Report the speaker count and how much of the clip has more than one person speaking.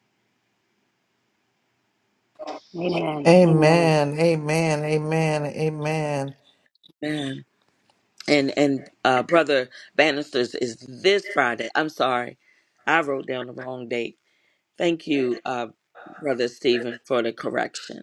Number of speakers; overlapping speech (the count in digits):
3, about 4%